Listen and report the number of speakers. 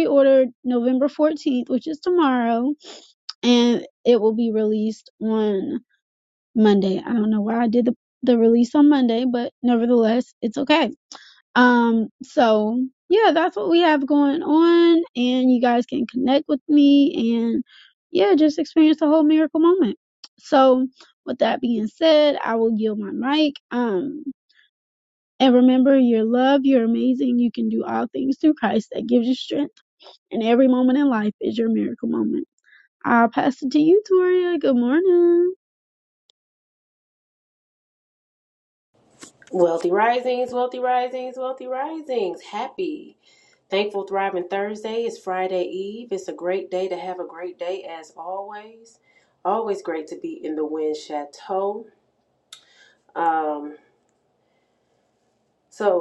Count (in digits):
2